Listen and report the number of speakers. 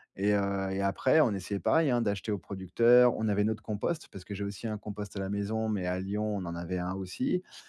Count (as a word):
one